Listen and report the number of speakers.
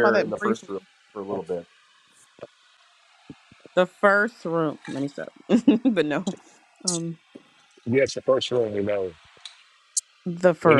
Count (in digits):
3